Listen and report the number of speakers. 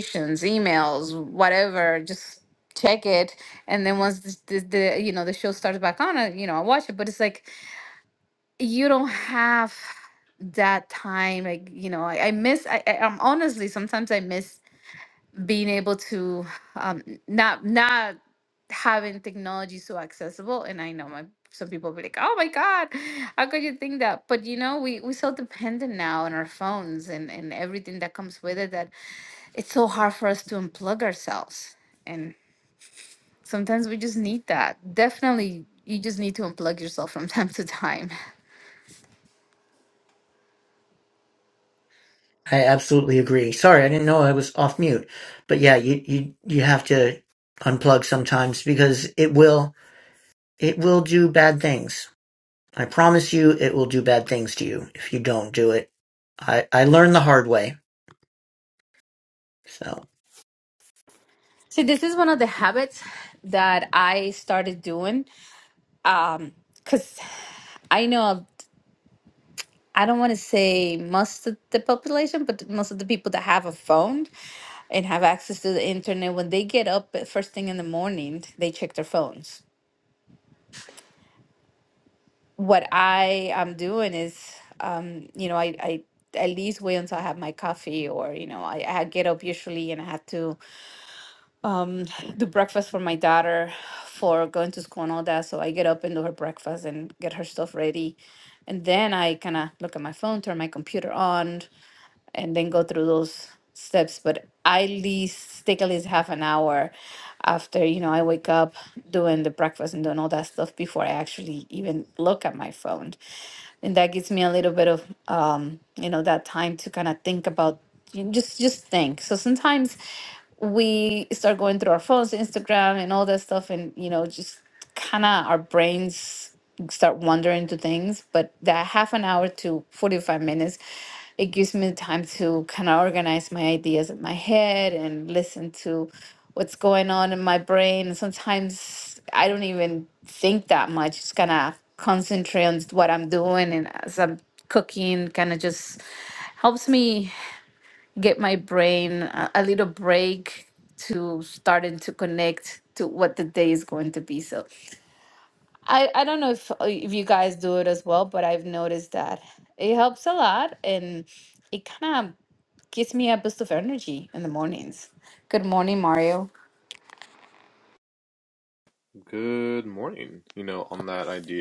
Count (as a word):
three